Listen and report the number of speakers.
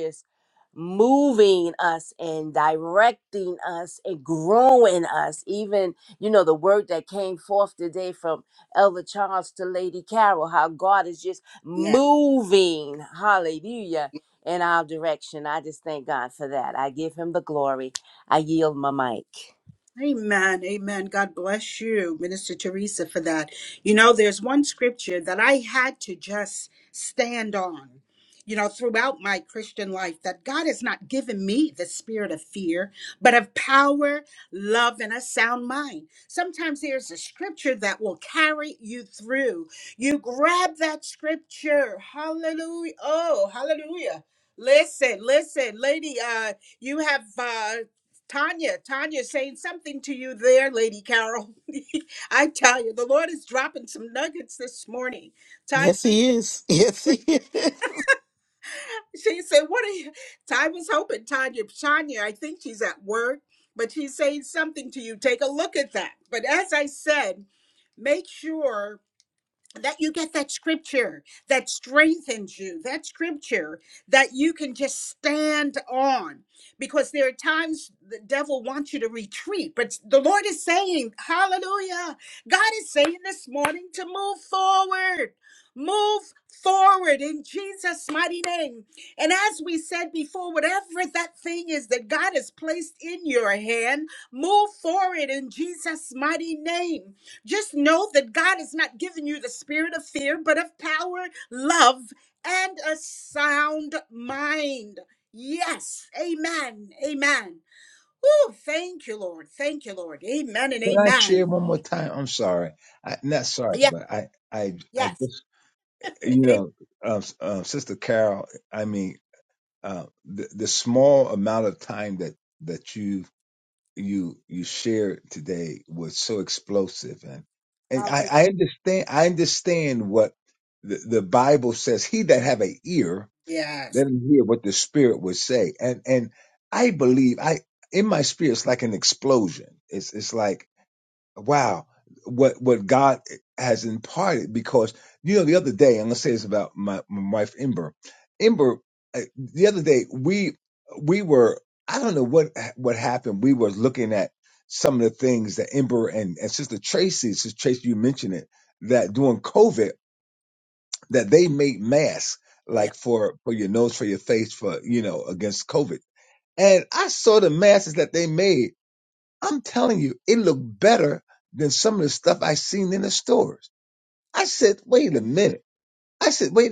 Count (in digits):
4